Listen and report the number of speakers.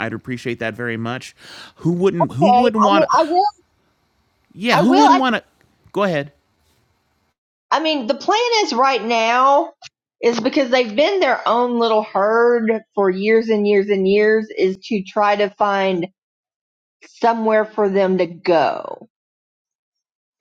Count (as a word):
two